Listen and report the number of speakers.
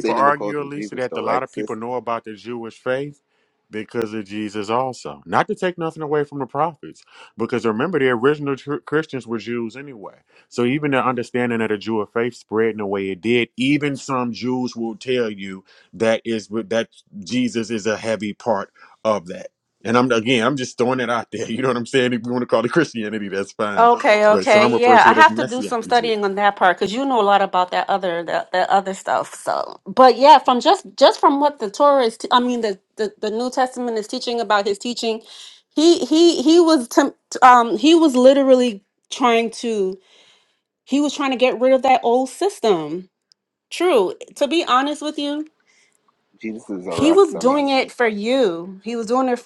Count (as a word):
three